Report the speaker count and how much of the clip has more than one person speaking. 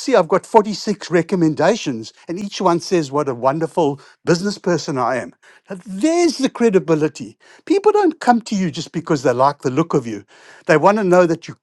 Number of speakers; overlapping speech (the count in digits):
1, no overlap